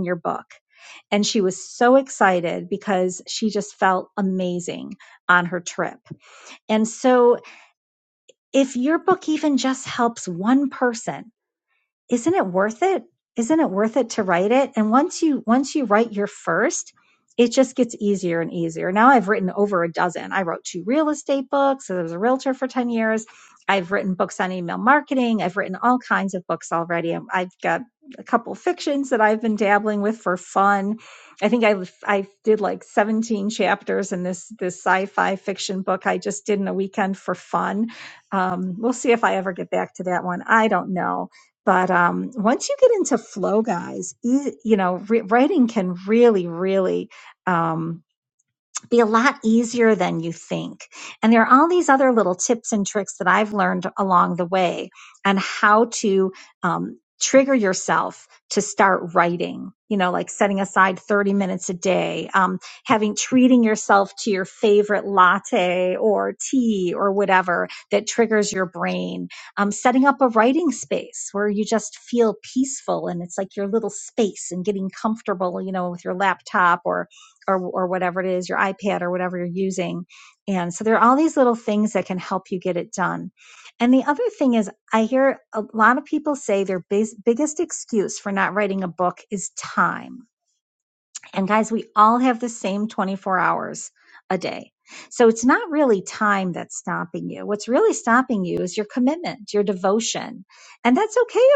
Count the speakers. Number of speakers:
1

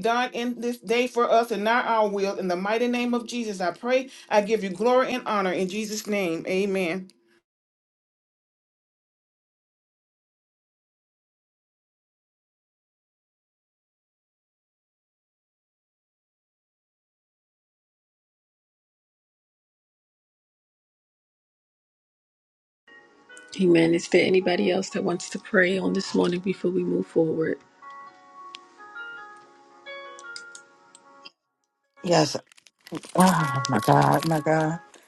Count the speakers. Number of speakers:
3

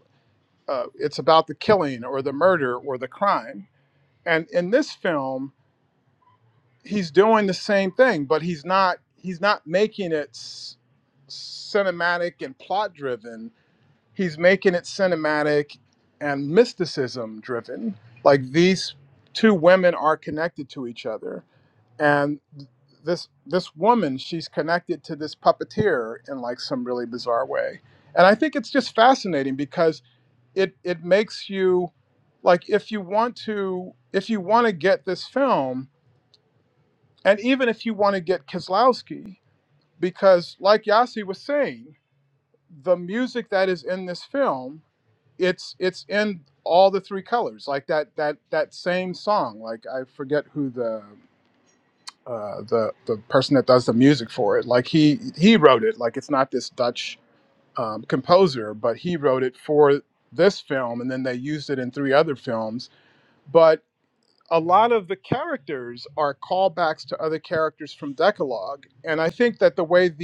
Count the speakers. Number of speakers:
1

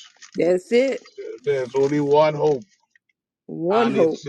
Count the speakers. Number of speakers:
2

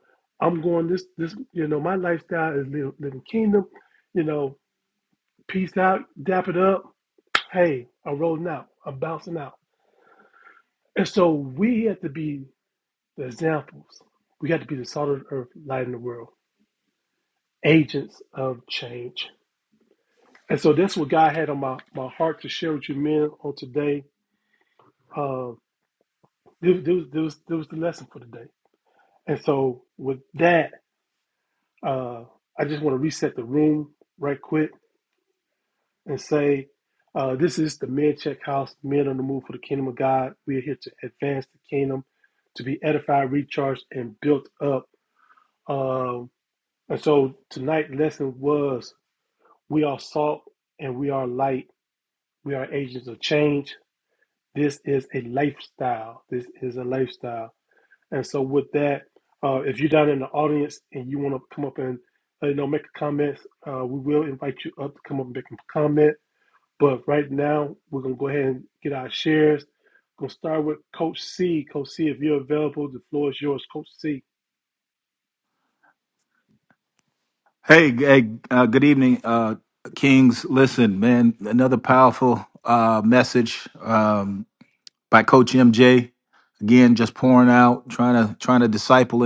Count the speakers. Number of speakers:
2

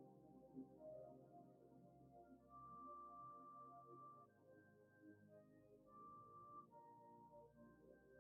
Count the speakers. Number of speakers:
0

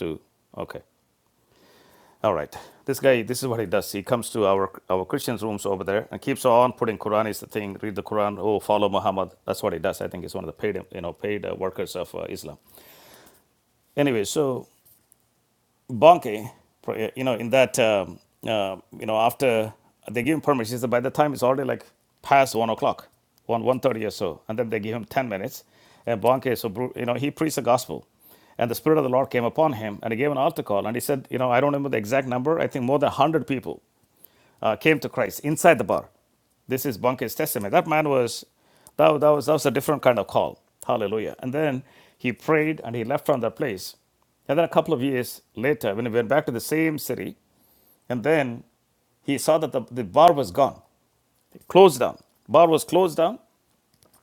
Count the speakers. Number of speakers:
1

